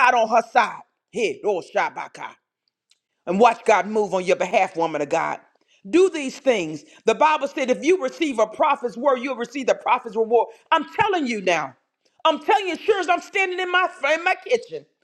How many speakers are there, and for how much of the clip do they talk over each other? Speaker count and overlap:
one, no overlap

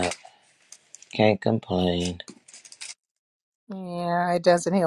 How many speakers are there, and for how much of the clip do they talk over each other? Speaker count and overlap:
two, no overlap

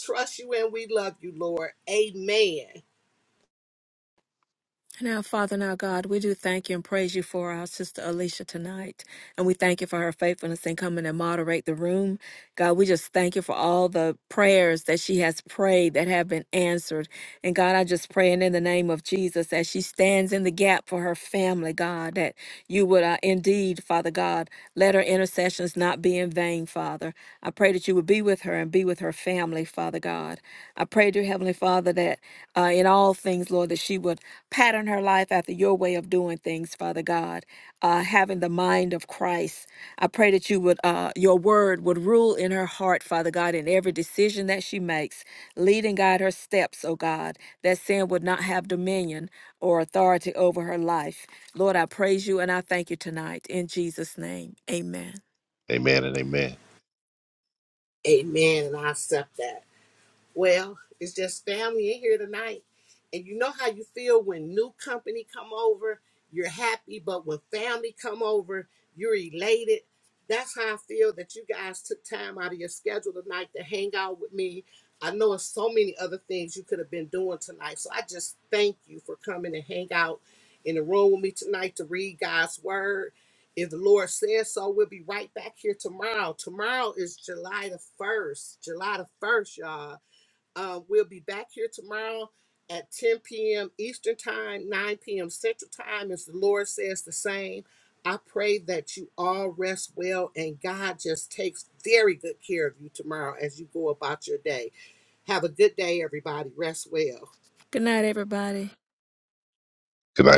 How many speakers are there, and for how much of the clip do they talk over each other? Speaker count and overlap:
three, no overlap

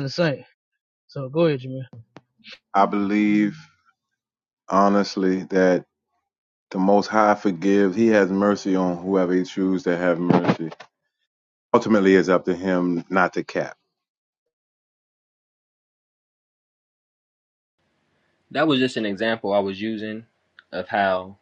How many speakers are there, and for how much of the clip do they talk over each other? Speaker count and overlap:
three, no overlap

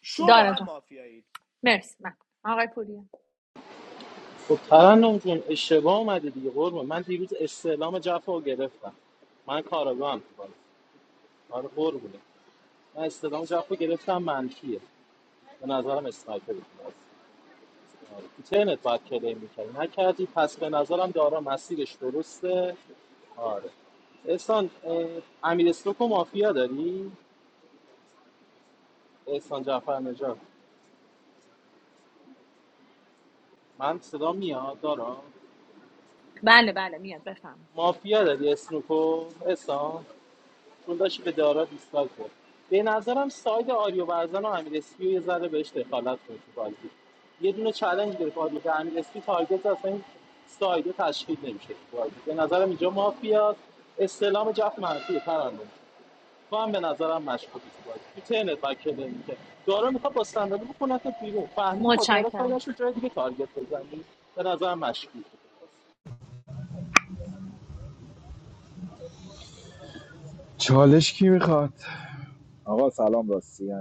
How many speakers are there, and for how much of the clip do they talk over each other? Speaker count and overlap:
four, about 2%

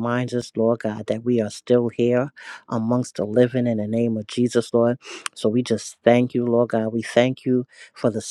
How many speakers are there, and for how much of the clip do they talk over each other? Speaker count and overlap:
one, no overlap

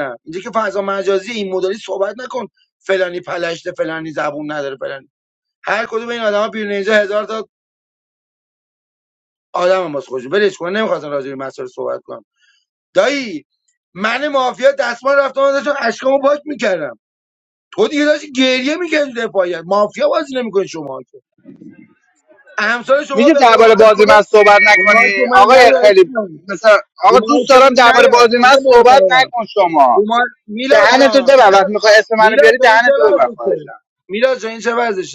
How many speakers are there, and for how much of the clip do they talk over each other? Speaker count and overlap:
two, about 19%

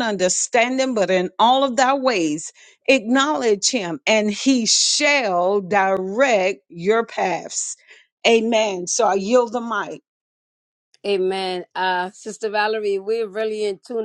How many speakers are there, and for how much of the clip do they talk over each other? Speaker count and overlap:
two, no overlap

